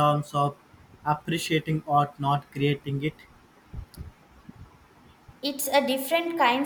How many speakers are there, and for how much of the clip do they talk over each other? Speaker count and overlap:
2, no overlap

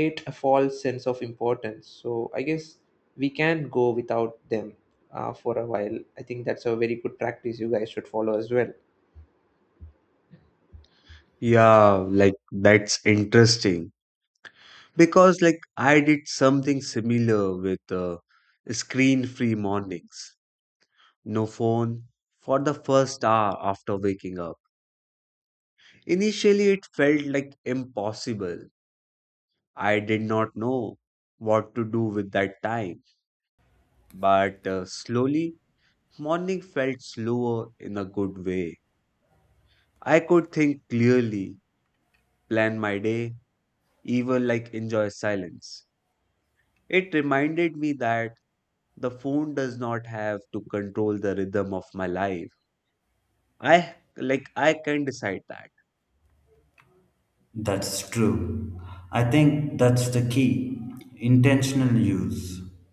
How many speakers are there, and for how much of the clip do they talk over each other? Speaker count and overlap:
3, no overlap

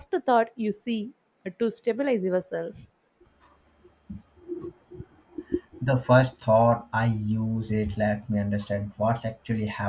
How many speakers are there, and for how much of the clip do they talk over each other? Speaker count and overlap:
2, no overlap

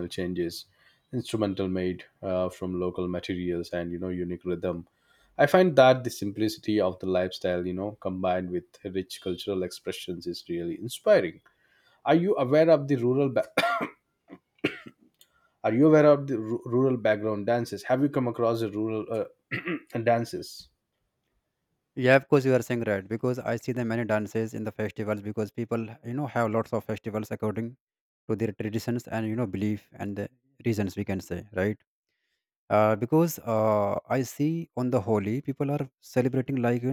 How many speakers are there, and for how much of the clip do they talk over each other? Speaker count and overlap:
2, no overlap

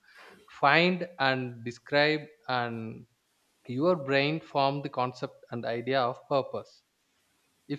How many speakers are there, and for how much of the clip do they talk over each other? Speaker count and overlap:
1, no overlap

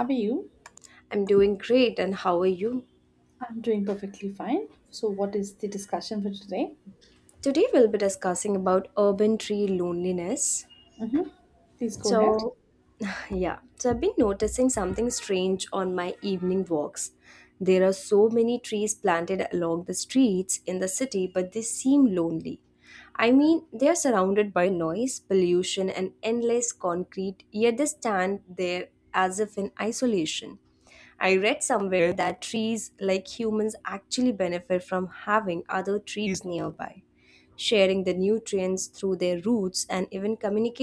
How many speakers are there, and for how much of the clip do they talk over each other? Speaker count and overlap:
2, about 1%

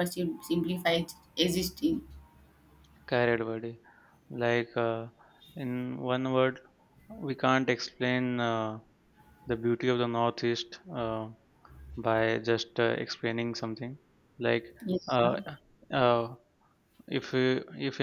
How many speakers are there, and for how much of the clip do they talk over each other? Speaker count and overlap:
2, no overlap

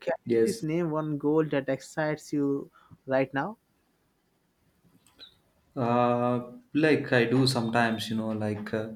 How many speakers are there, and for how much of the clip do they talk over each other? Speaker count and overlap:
2, about 2%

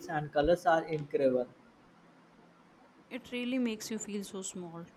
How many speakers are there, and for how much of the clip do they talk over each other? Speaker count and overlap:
2, no overlap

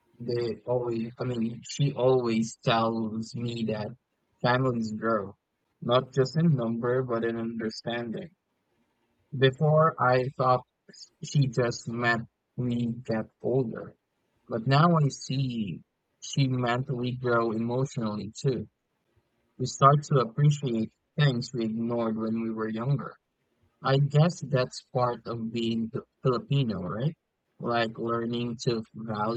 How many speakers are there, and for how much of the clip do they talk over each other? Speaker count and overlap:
1, no overlap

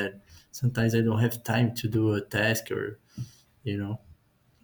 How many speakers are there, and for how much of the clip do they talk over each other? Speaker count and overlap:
1, no overlap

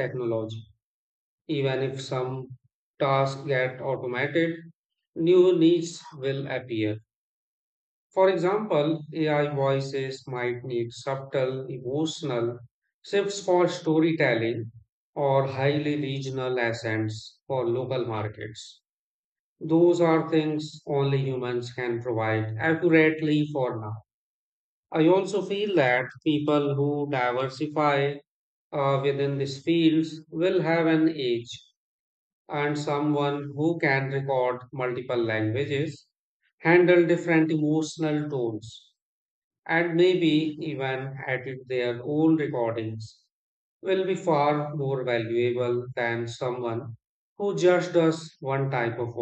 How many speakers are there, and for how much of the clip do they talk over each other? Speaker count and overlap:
1, no overlap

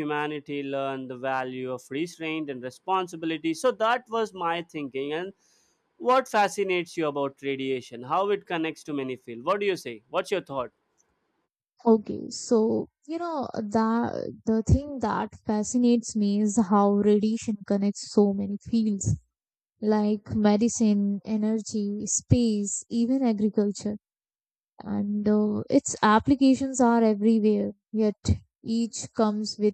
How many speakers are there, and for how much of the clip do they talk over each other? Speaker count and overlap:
2, no overlap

